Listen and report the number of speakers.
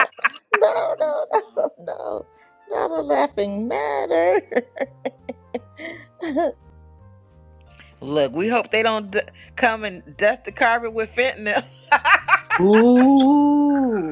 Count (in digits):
3